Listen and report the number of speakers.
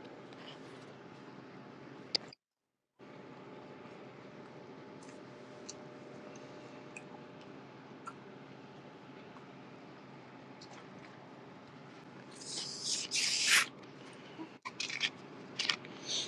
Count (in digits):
0